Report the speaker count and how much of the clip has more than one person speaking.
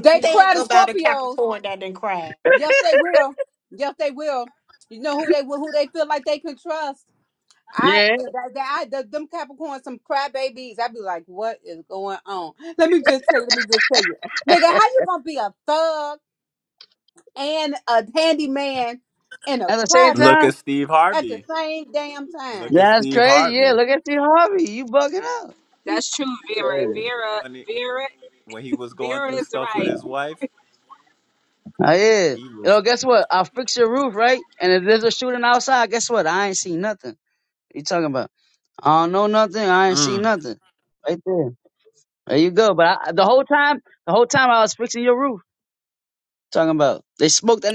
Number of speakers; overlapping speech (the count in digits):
5, about 14%